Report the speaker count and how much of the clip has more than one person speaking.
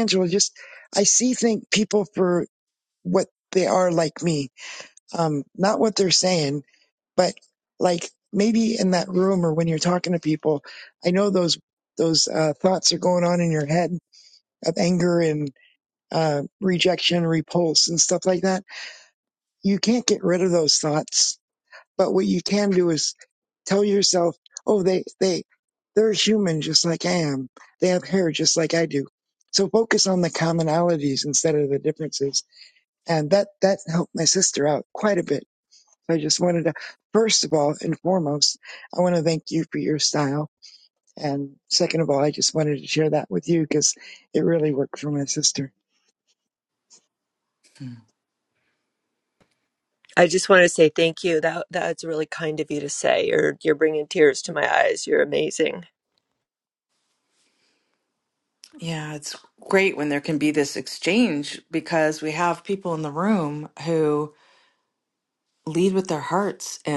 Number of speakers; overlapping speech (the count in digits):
3, no overlap